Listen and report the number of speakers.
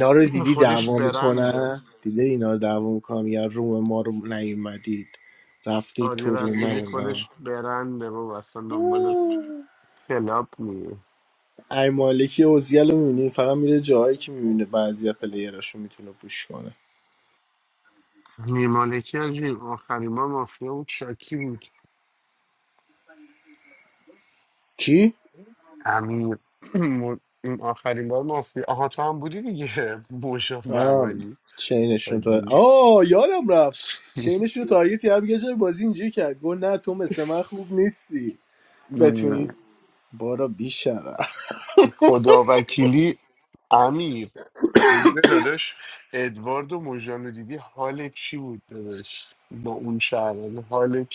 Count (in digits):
2